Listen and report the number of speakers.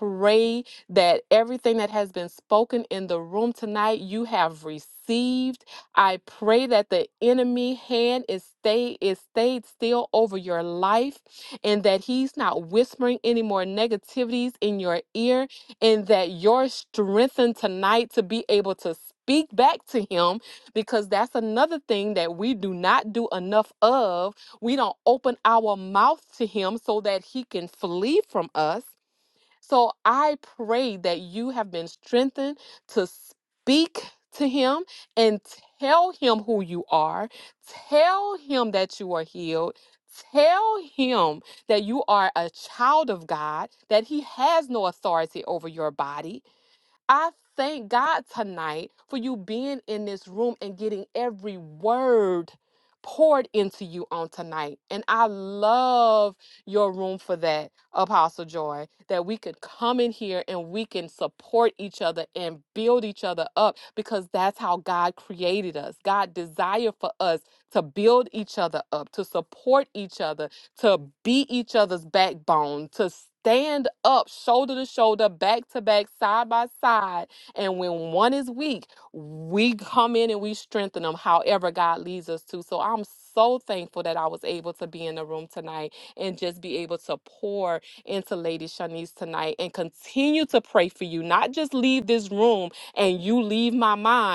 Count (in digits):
1